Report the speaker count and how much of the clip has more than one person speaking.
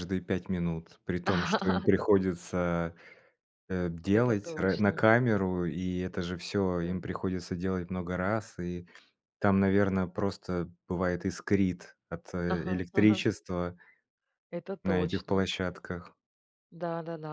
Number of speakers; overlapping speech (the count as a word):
two, about 15%